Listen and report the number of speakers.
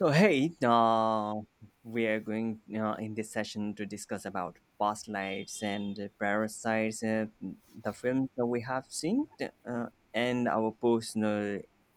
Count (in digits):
1